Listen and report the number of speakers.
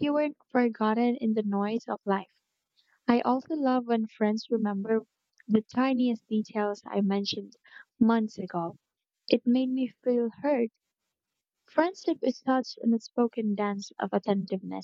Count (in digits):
1